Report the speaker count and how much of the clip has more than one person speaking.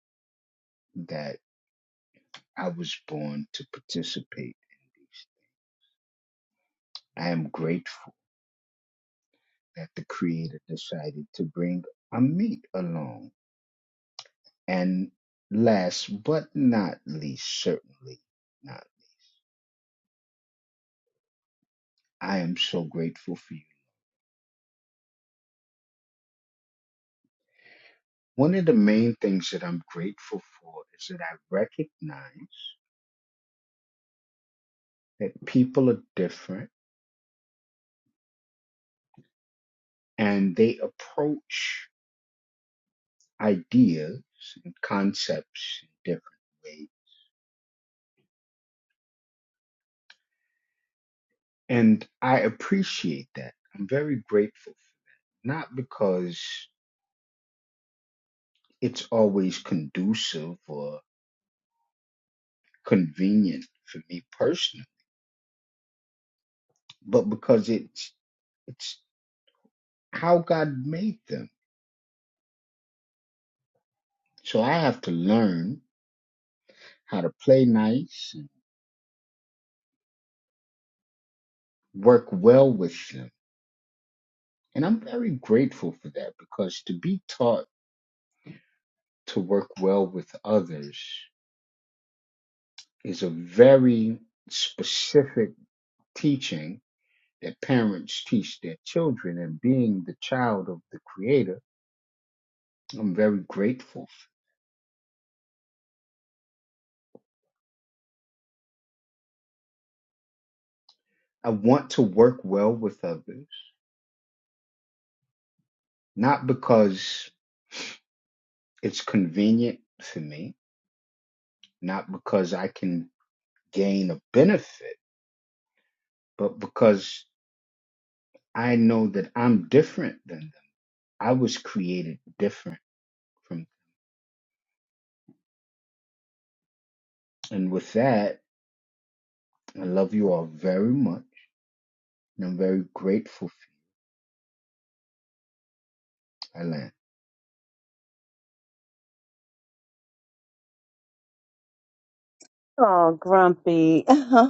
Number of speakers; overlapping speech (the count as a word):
two, no overlap